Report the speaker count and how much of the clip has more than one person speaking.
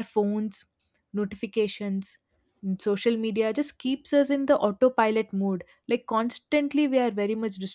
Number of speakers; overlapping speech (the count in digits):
1, no overlap